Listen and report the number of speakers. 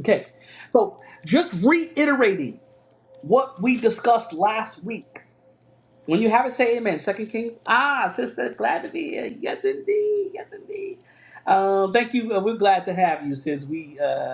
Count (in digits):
1